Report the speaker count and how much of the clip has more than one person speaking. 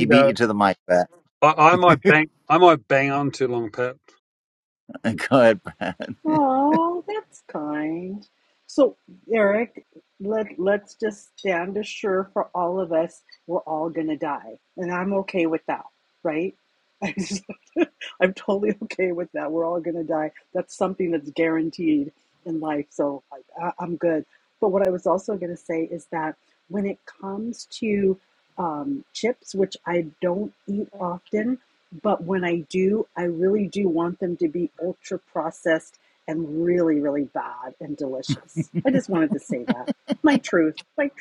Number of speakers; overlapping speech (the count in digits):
3, about 1%